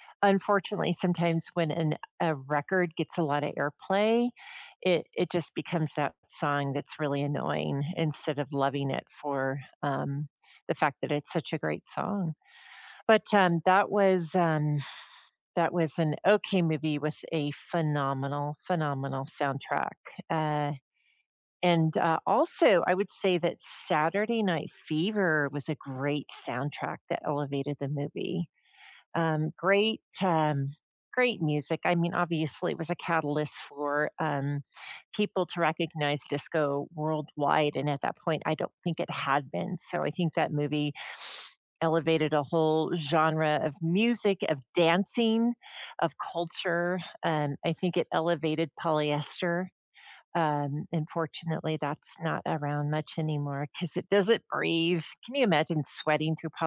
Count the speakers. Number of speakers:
1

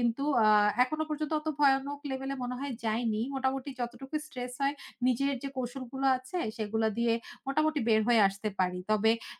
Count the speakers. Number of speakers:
1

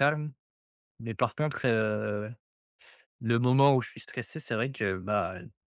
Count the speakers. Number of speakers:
1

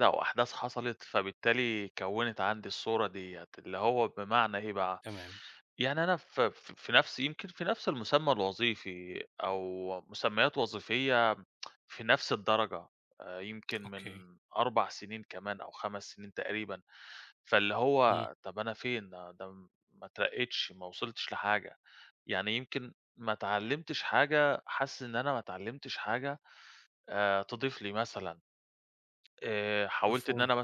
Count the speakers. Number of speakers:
2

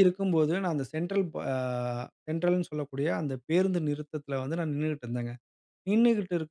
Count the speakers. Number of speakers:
1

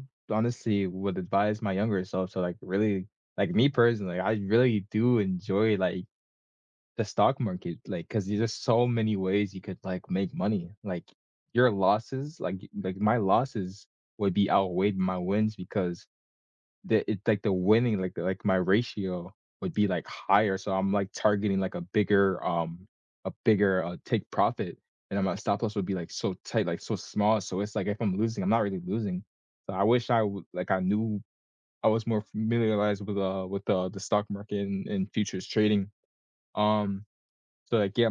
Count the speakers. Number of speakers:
1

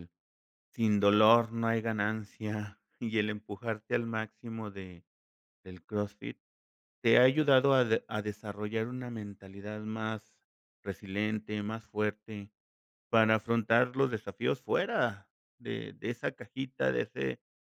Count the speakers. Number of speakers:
1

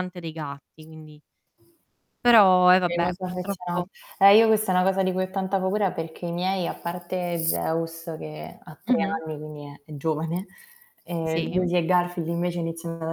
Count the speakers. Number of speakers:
2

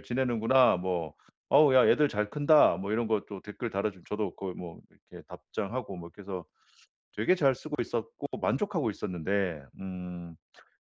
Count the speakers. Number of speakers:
1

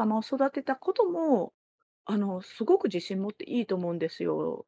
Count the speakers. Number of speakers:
1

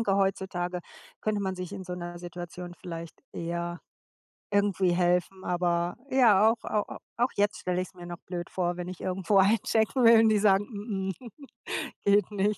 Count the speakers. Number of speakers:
1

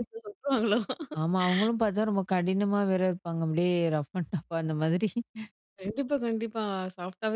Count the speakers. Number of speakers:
2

